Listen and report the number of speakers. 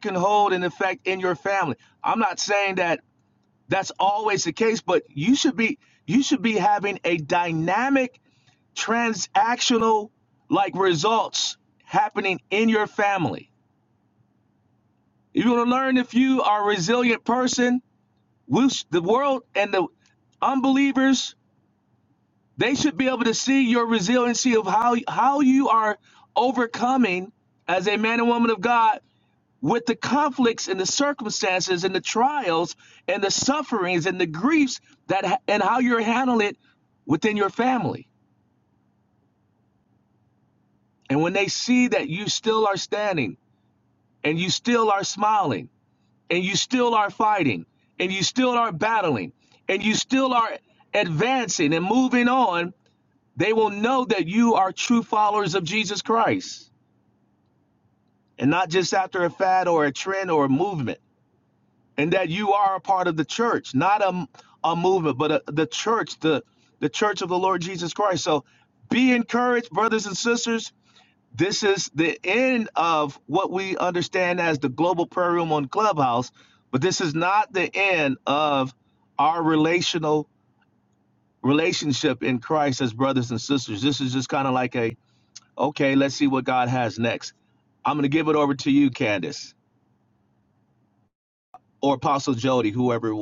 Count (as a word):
one